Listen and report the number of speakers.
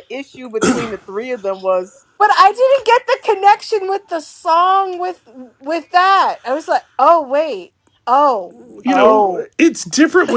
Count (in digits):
3